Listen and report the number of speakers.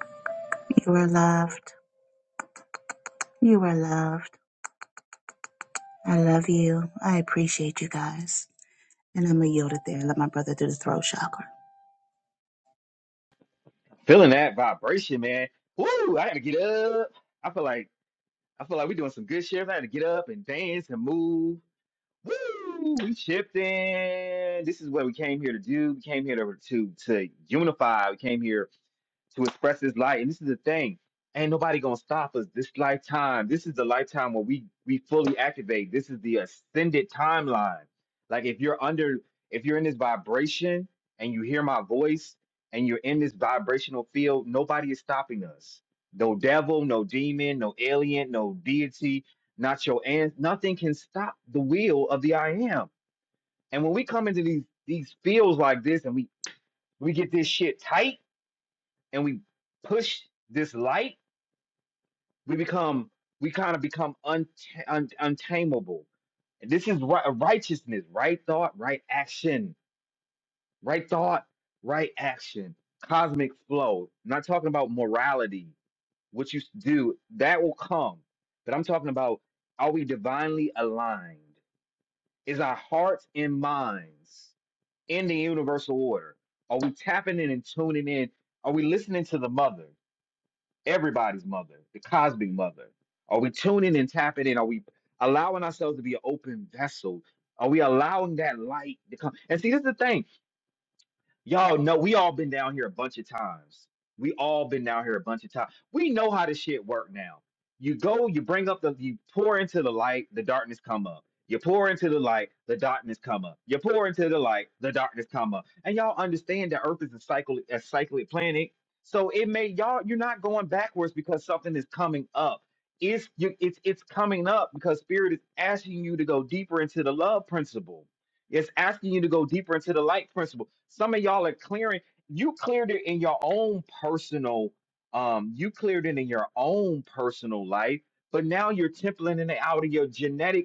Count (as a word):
two